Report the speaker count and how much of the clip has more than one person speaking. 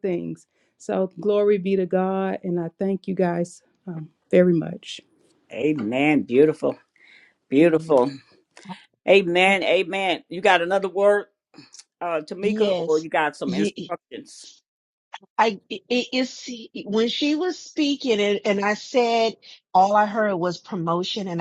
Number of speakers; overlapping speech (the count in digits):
3, about 6%